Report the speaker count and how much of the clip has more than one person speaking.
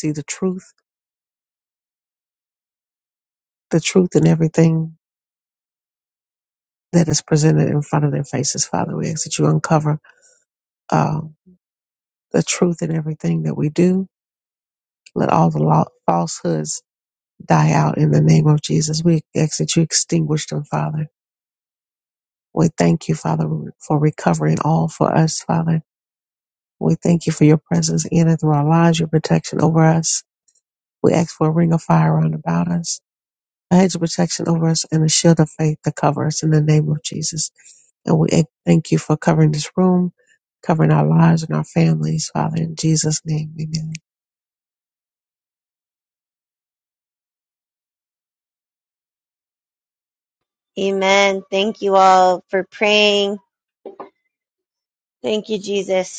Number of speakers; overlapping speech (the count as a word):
two, no overlap